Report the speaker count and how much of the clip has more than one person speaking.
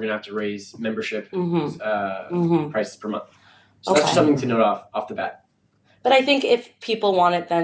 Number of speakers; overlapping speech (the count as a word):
two, about 4%